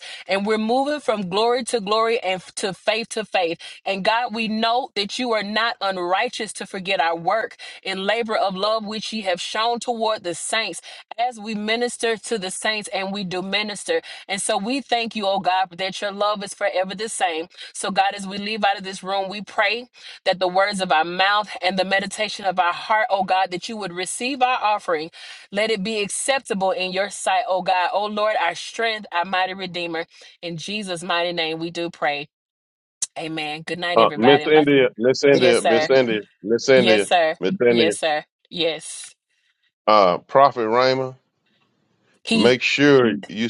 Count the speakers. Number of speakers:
two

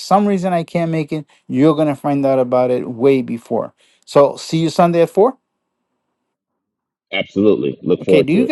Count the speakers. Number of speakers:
two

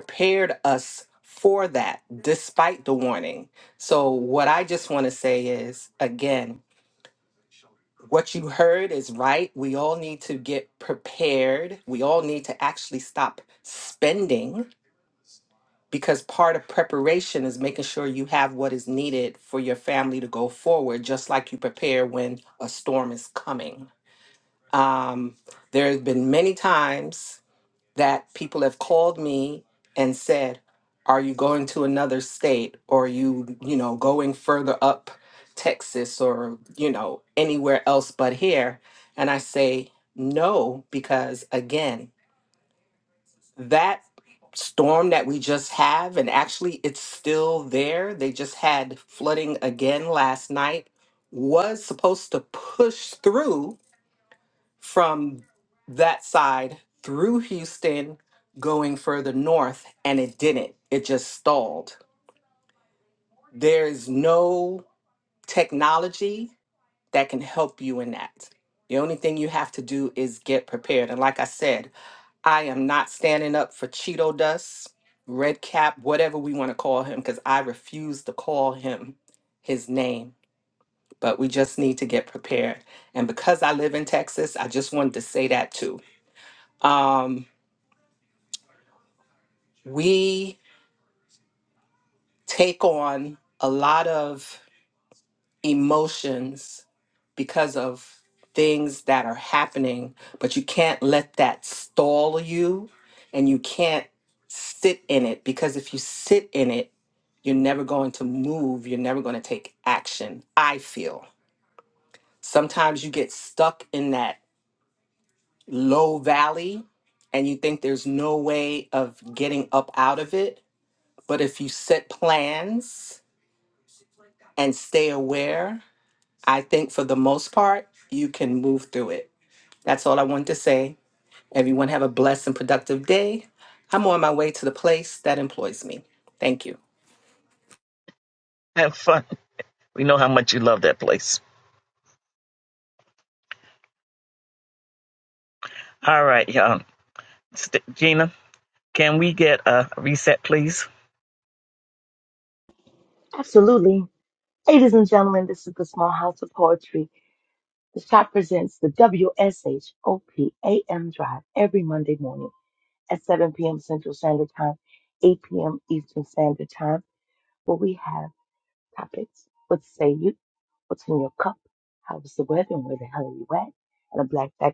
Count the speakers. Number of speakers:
three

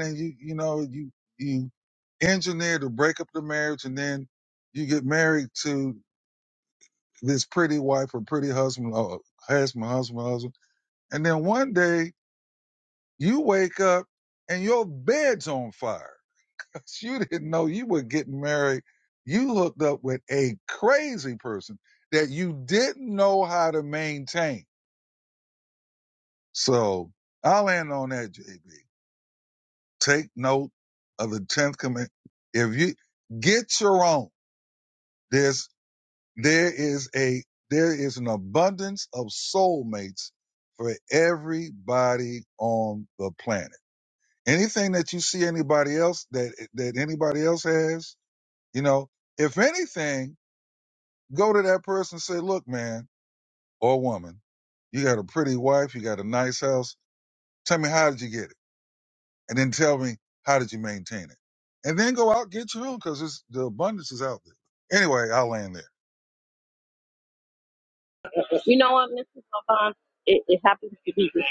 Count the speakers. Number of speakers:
two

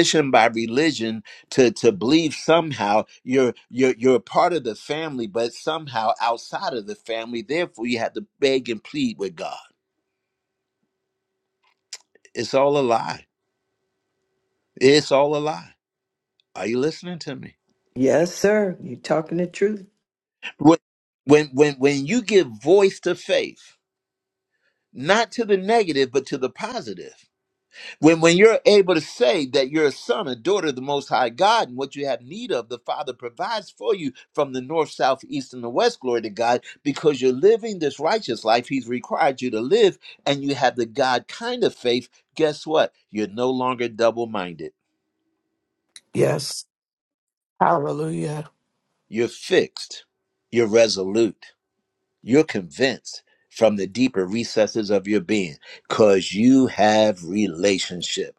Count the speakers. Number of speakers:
three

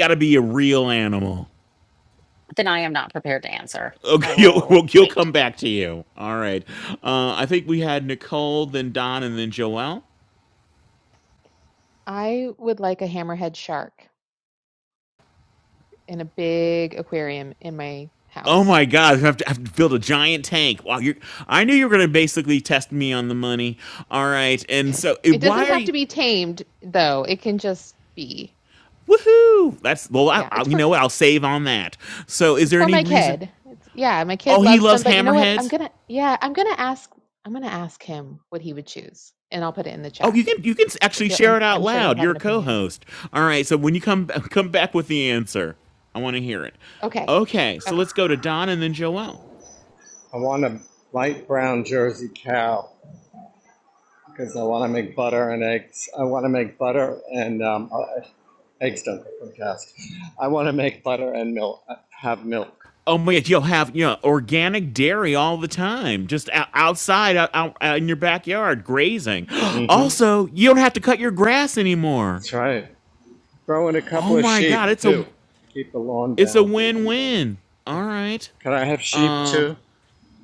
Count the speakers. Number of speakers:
four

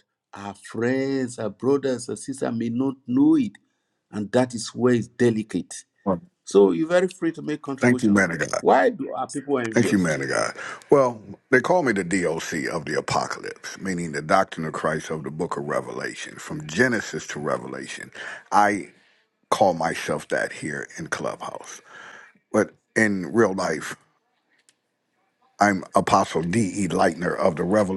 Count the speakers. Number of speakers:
two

